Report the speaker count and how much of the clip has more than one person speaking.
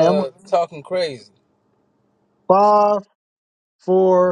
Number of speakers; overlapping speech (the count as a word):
two, about 6%